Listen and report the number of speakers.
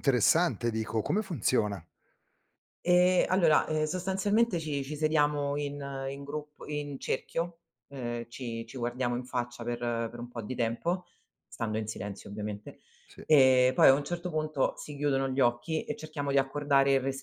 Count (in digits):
2